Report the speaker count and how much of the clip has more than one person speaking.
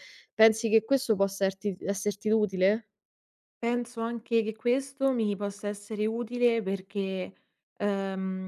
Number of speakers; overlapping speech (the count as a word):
two, no overlap